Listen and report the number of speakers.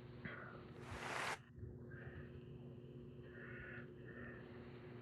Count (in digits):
0